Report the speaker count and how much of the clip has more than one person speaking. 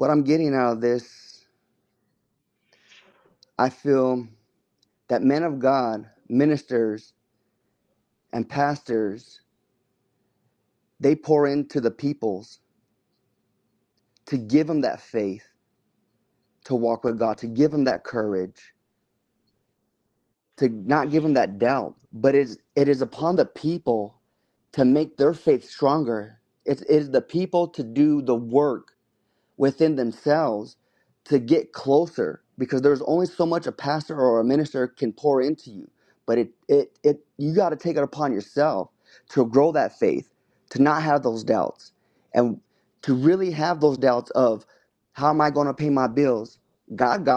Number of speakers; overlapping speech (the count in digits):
1, no overlap